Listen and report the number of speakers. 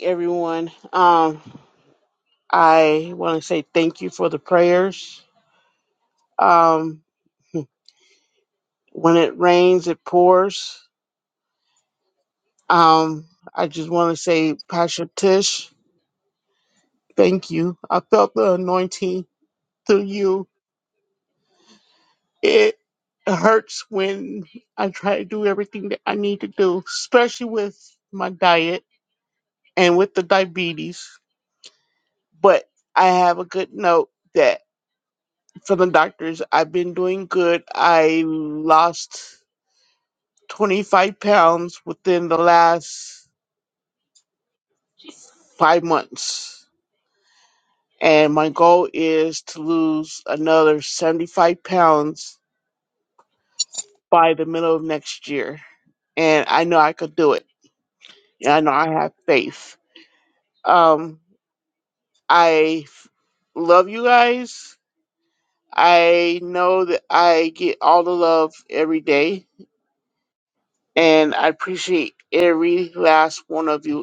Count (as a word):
one